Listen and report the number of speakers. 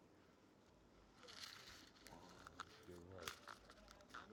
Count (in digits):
0